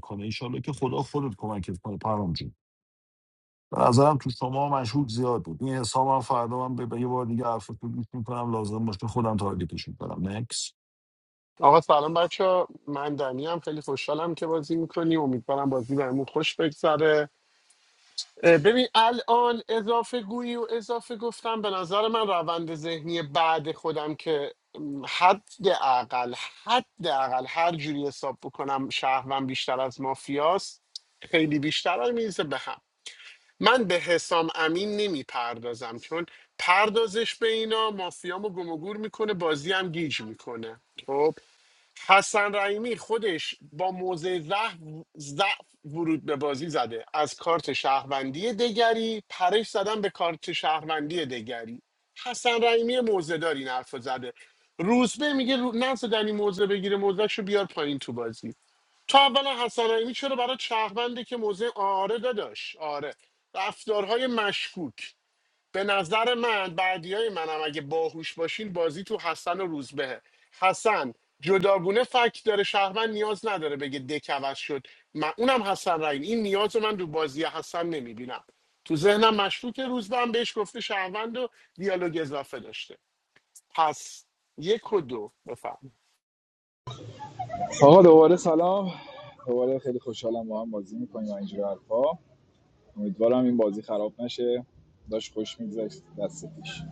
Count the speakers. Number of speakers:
3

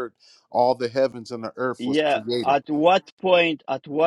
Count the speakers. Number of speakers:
2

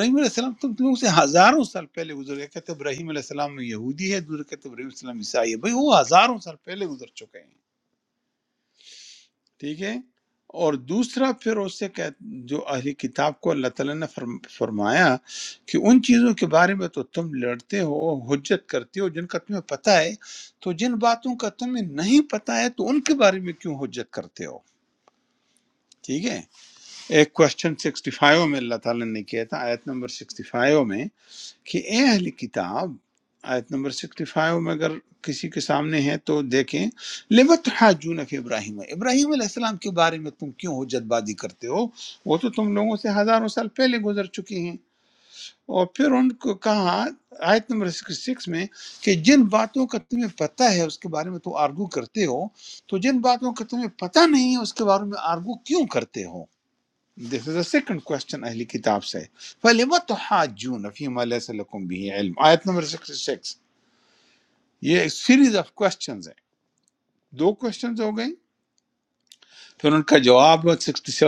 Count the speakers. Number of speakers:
1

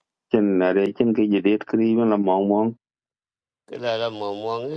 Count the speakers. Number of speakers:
2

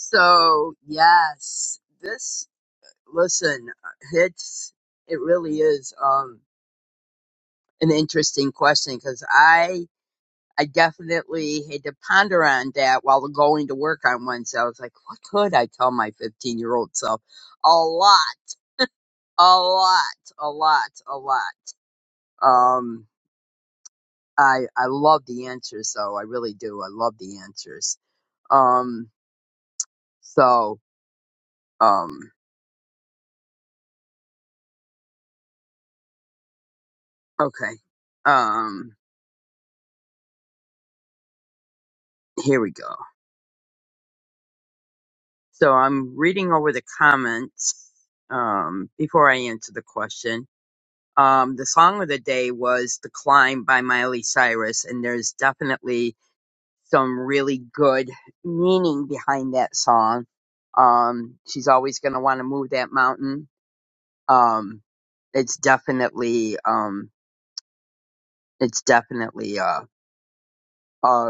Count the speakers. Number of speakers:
1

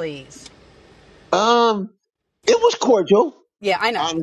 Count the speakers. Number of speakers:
2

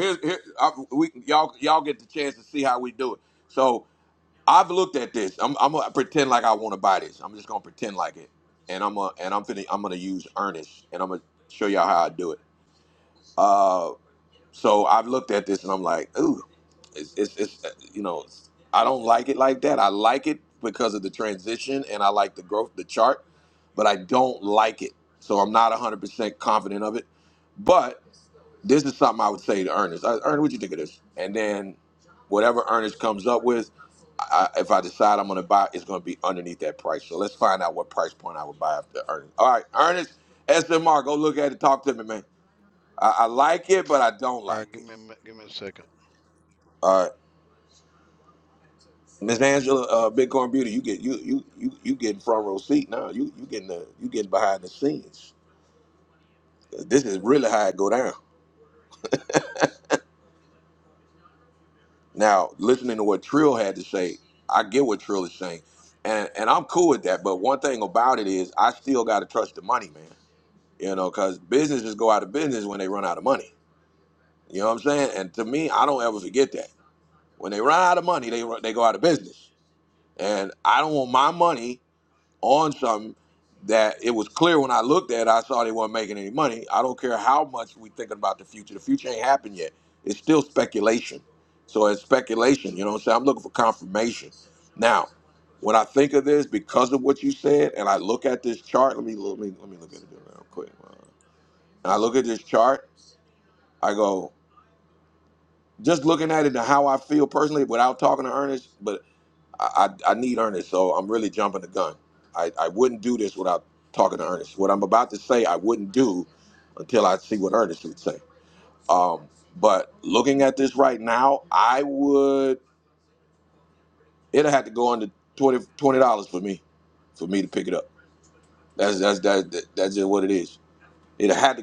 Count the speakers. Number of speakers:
2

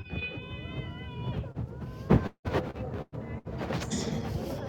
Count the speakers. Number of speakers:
0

